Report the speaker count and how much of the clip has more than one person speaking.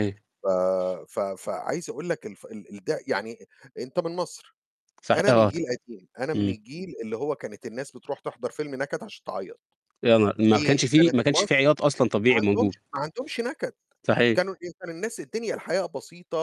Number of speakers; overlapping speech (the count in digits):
2, about 13%